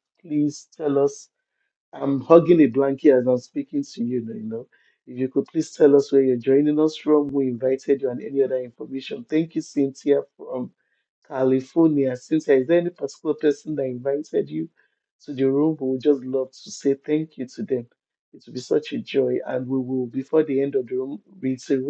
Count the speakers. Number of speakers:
1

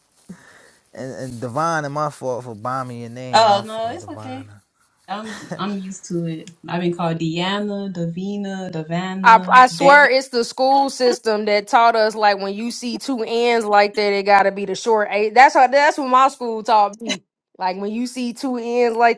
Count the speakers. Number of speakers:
3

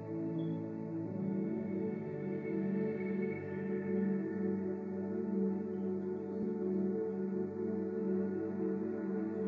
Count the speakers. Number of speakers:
0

